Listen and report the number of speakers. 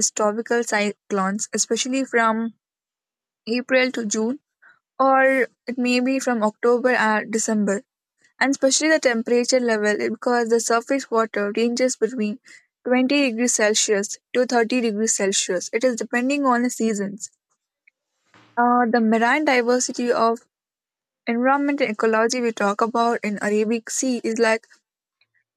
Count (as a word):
one